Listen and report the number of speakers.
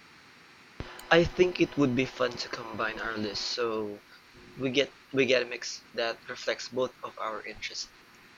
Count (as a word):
one